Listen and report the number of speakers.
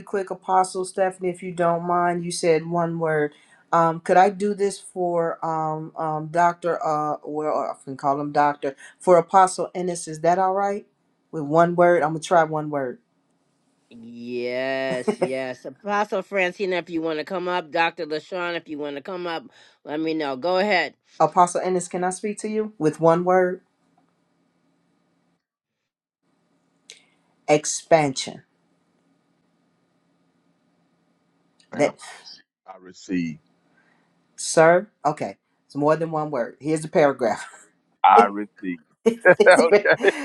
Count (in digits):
3